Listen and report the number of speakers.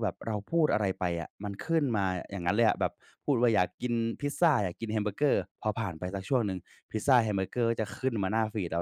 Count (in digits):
1